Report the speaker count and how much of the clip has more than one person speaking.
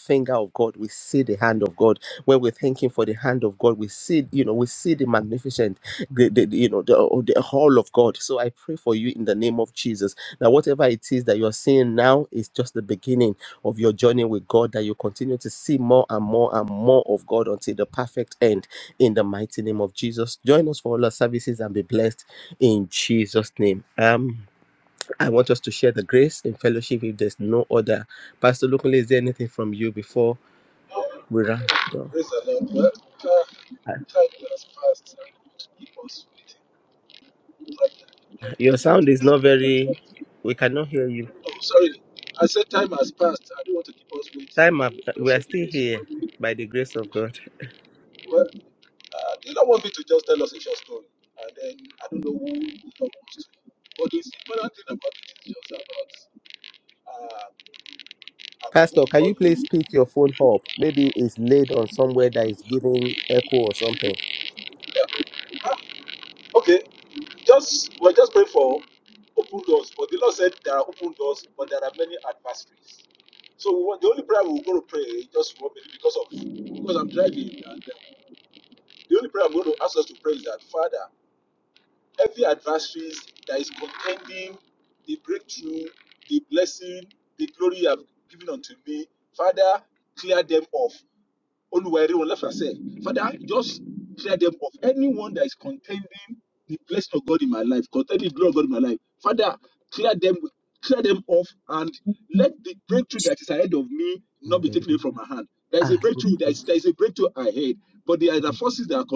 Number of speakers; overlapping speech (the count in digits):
2, about 2%